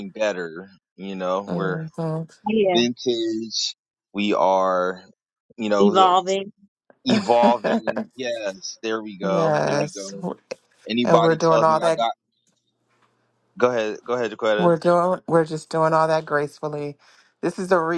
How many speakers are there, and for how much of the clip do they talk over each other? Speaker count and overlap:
three, about 15%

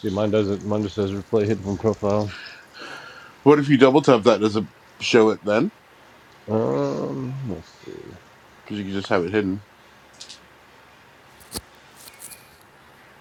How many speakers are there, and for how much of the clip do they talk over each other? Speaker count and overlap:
two, no overlap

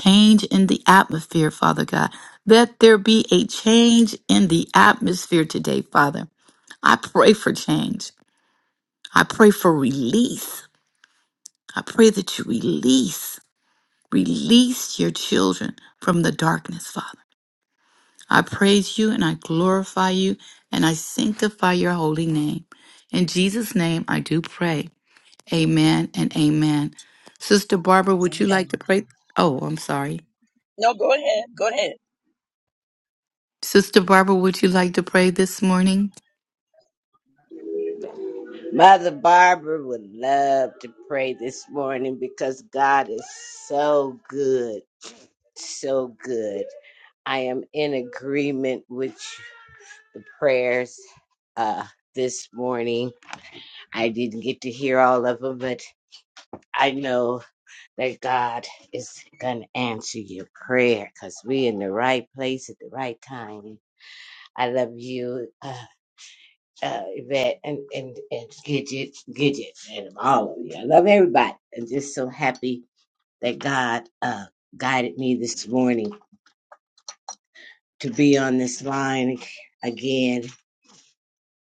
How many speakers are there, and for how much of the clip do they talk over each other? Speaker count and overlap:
three, under 1%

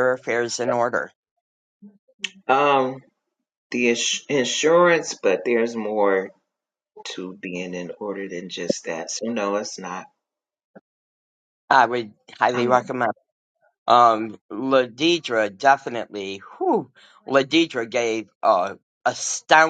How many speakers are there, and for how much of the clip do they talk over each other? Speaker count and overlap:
two, about 2%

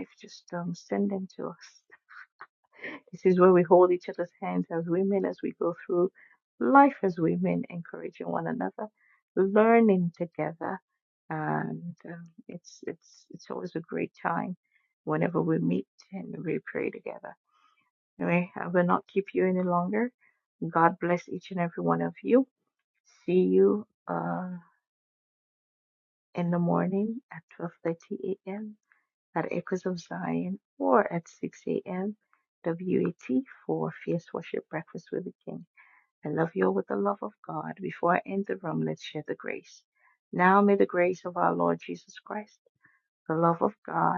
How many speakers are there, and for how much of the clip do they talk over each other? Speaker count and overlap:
one, no overlap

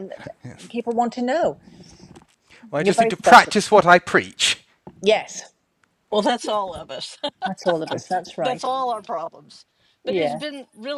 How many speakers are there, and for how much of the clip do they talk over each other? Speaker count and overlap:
three, about 11%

